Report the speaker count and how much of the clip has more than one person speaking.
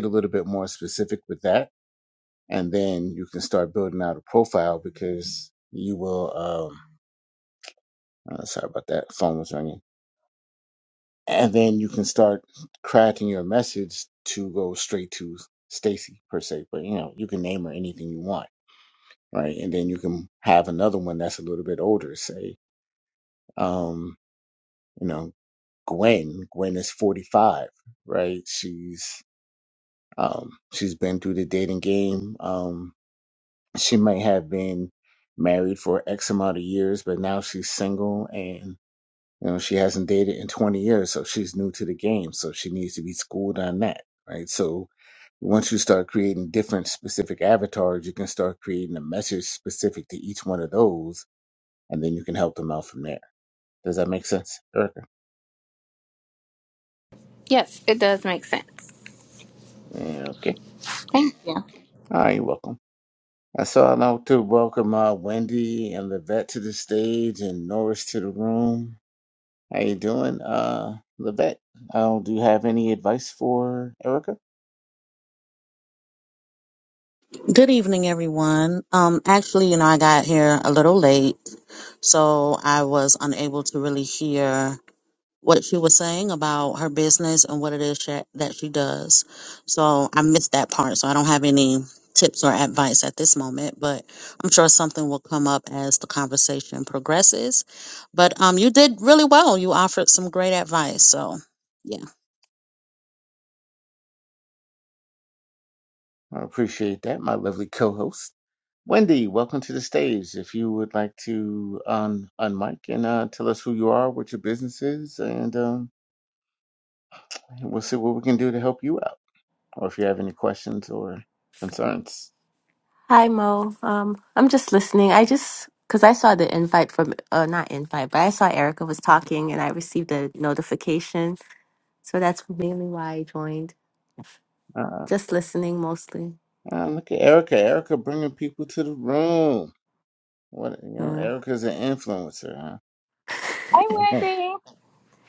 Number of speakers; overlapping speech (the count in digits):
4, under 1%